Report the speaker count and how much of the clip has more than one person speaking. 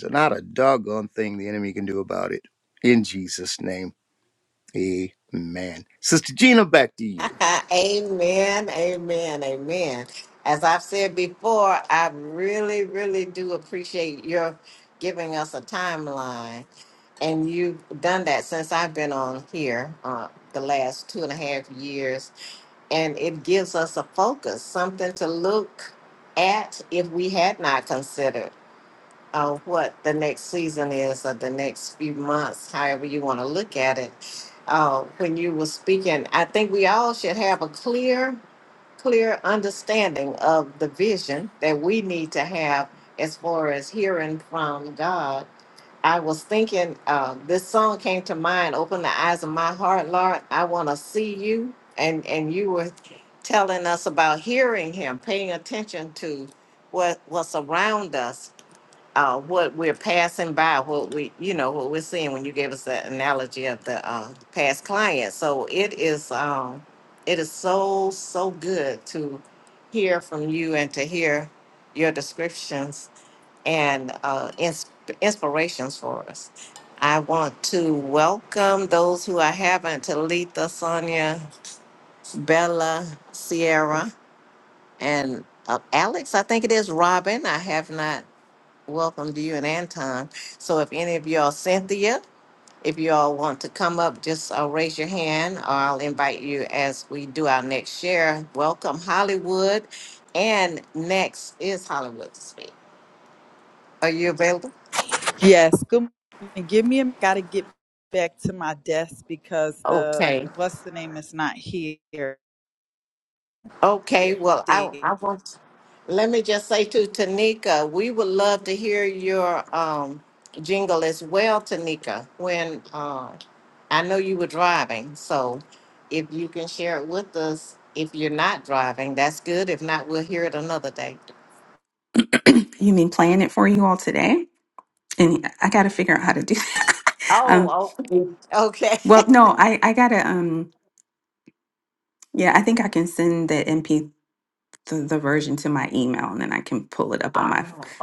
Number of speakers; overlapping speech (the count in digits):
4, about 1%